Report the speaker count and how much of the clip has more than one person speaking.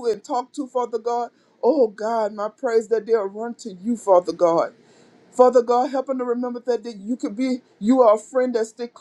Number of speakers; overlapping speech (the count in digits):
1, no overlap